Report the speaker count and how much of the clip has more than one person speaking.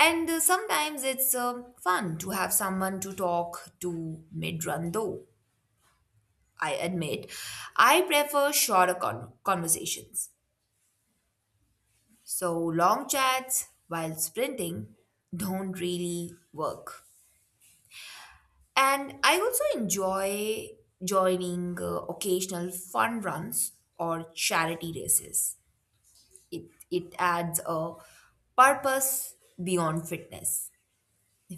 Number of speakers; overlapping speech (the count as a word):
one, no overlap